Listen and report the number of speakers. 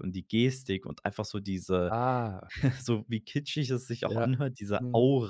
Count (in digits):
2